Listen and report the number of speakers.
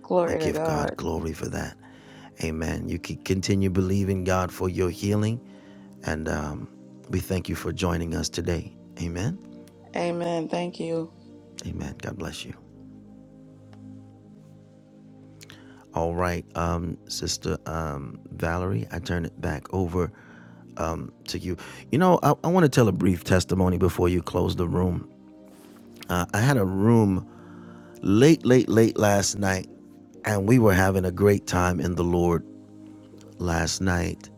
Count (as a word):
two